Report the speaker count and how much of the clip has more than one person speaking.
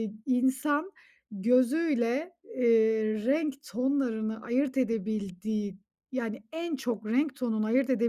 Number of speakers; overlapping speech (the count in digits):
1, no overlap